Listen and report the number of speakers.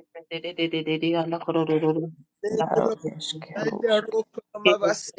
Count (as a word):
three